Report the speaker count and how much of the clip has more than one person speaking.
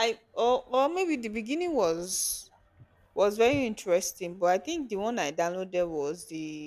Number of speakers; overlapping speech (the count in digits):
1, no overlap